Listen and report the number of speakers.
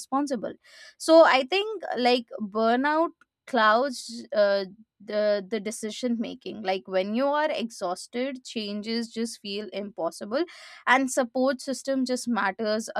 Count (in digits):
1